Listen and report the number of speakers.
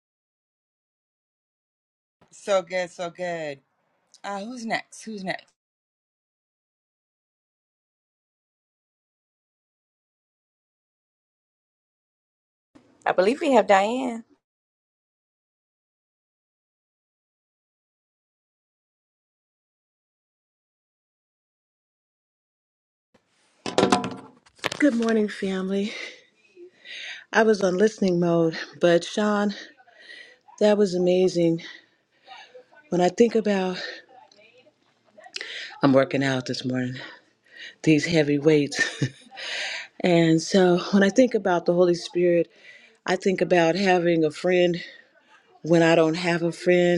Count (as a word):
three